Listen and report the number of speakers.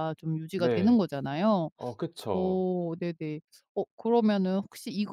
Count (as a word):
two